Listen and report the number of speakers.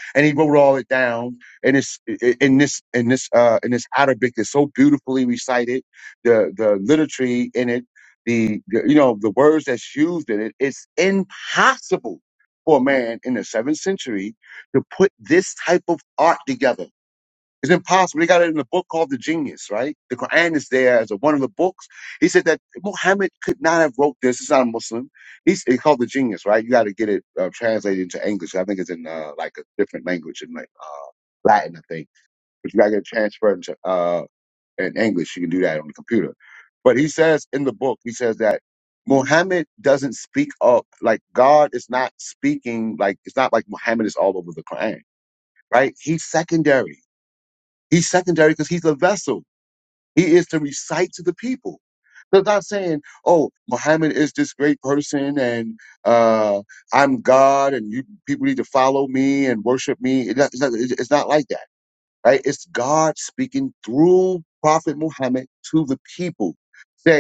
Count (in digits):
1